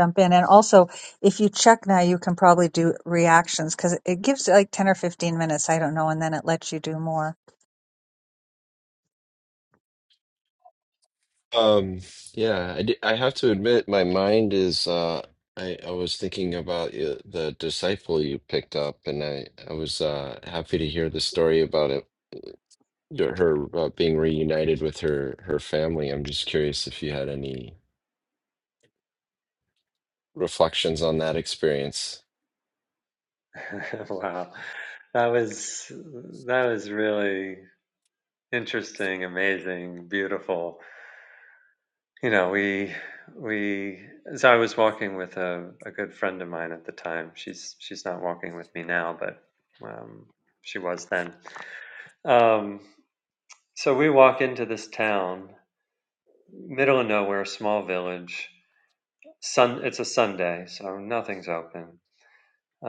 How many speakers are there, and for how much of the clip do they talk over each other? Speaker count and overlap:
three, no overlap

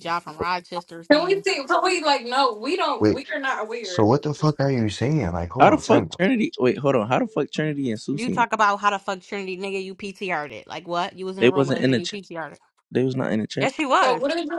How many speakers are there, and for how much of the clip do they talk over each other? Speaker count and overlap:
four, about 18%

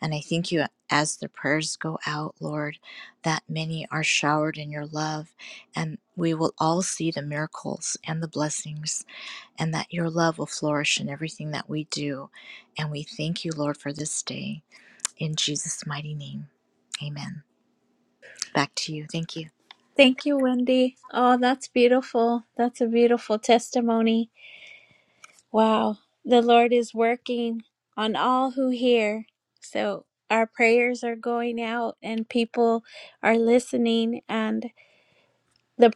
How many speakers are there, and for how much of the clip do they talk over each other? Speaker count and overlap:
two, no overlap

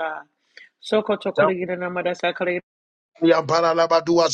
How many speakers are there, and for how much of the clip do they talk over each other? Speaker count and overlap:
two, no overlap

